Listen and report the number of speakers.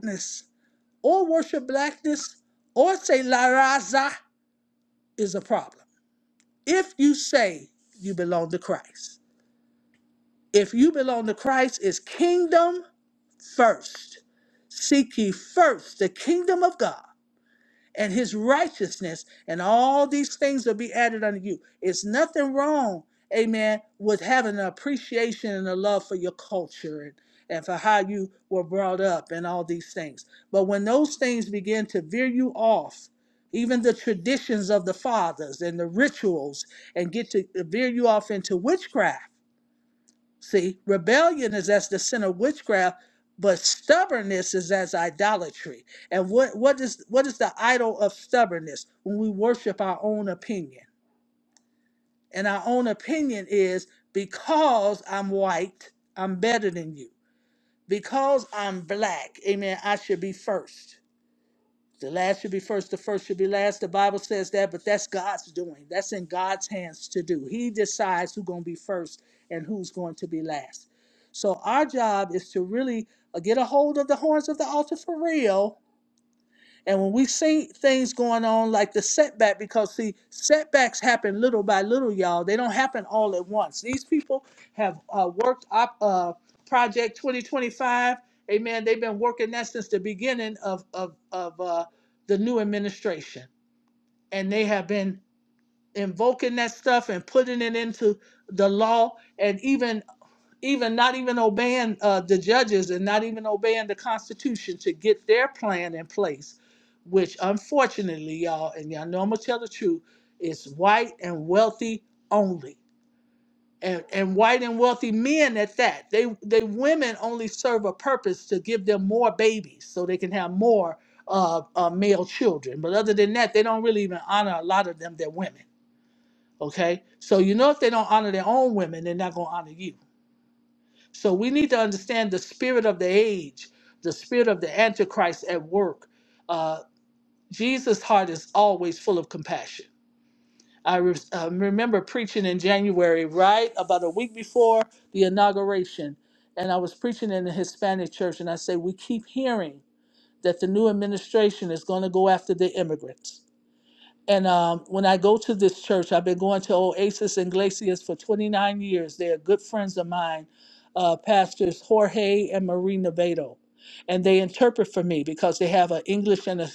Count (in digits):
1